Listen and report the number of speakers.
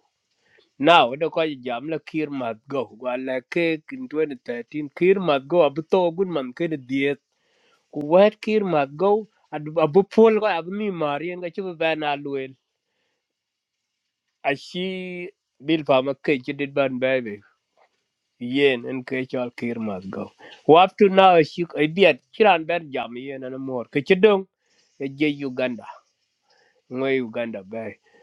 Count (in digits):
1